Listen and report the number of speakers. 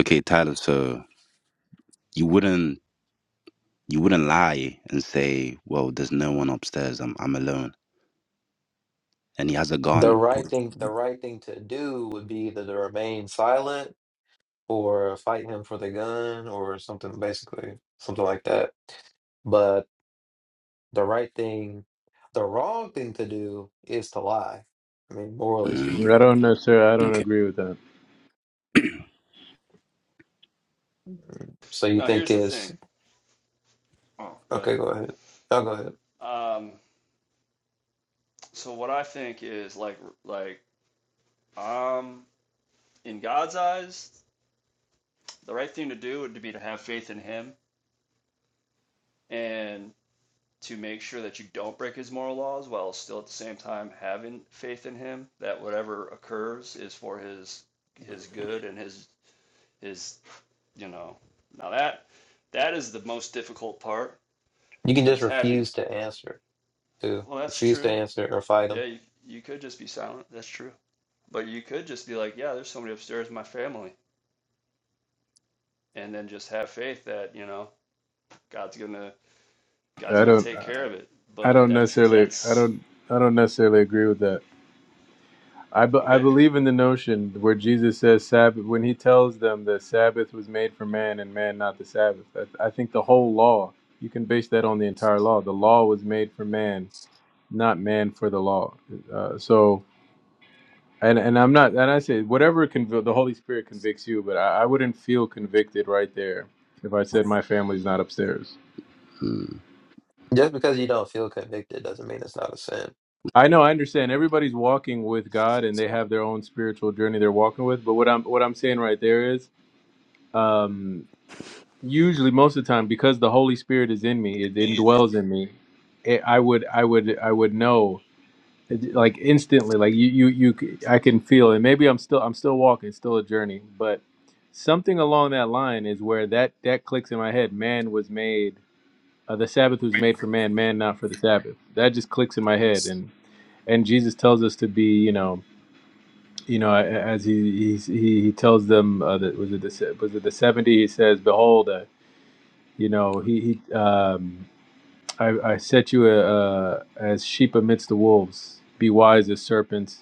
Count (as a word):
four